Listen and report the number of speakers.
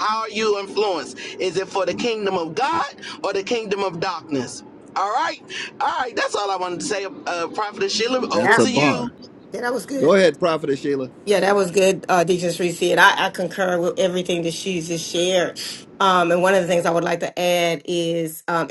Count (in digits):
3